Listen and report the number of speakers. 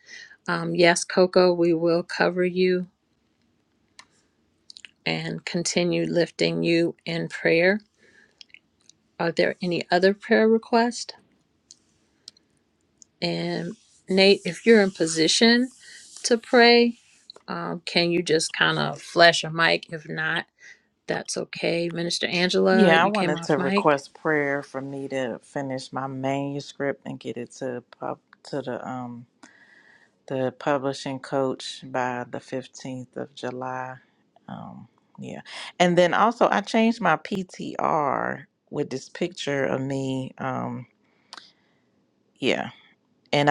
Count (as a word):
two